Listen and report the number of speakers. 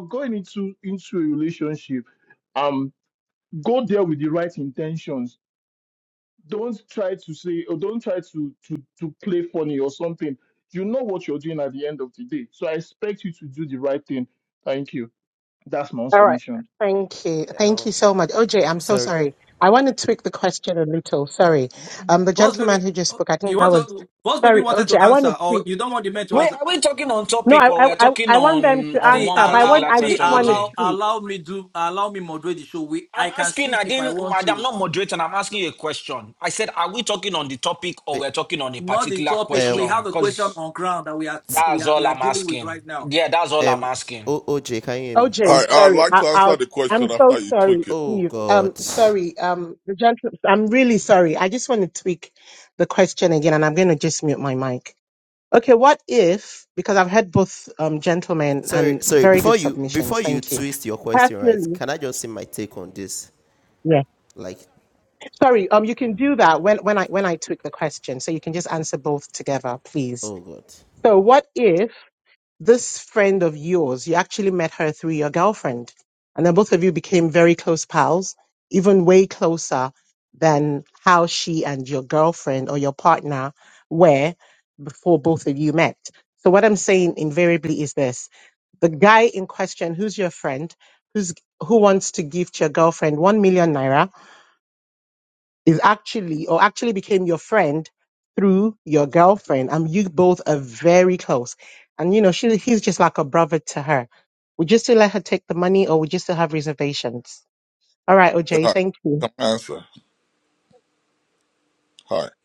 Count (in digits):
6